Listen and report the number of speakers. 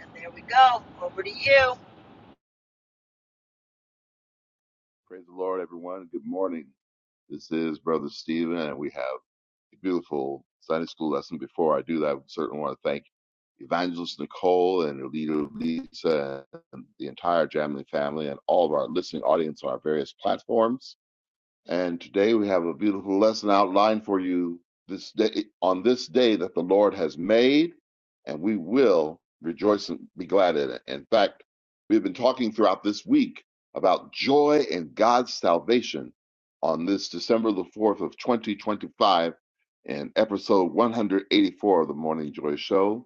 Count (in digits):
2